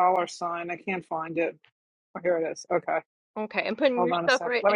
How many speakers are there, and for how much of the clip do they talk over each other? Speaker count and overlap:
two, about 17%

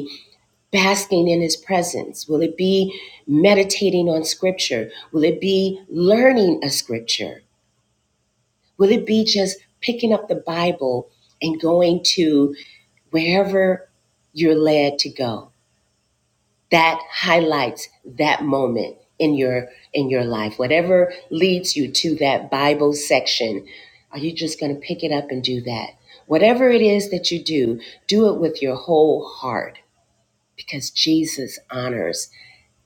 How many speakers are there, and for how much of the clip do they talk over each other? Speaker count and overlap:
one, no overlap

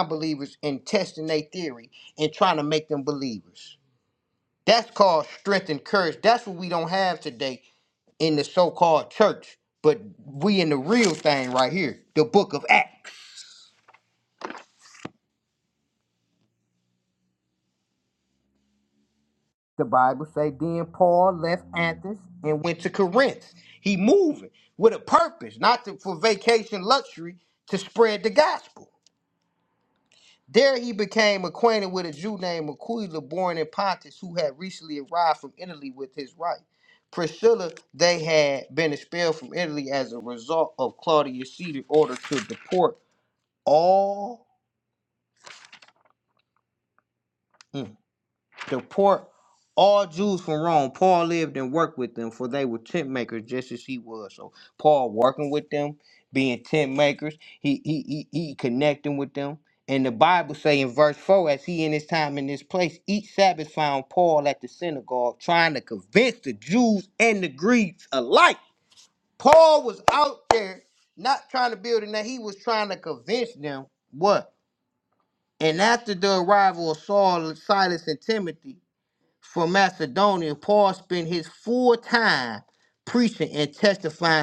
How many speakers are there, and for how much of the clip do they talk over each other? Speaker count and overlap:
one, no overlap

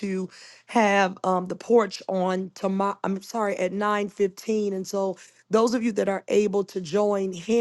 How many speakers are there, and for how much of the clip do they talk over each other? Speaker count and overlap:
one, no overlap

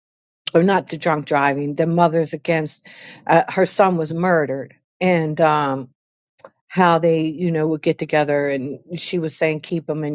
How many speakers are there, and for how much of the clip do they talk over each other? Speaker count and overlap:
one, no overlap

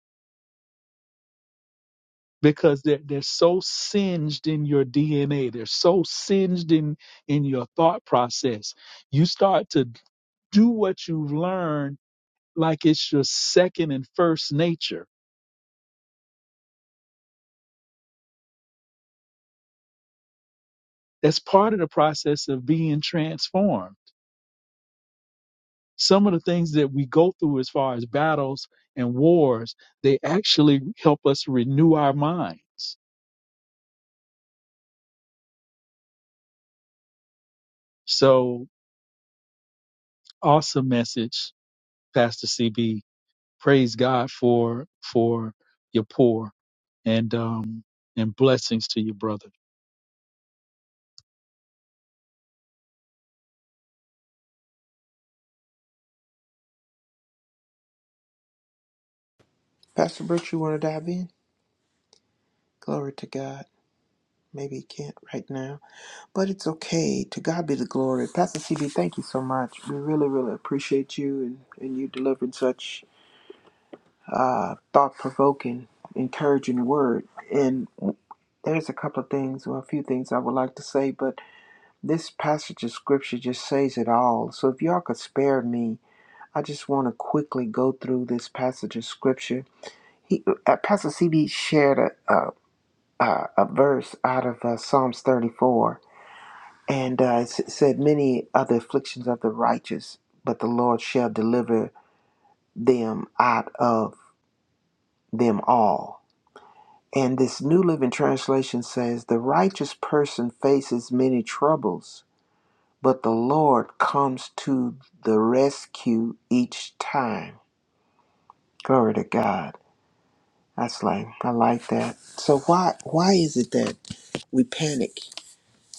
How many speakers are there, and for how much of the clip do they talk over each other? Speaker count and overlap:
two, no overlap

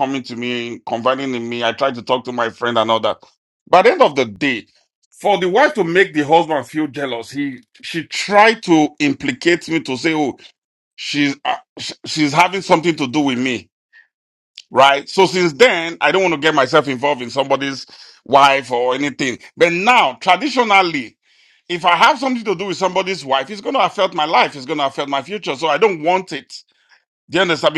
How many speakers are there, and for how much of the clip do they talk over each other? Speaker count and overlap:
one, no overlap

